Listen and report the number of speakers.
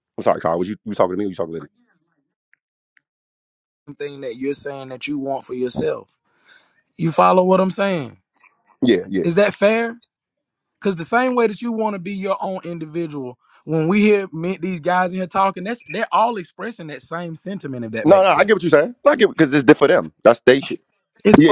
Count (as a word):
two